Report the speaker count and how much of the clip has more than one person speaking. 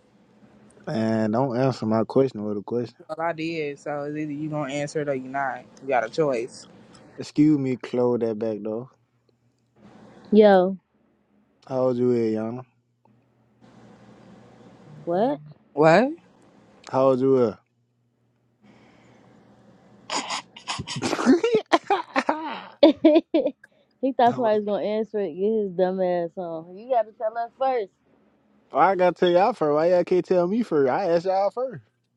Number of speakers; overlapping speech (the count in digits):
3, no overlap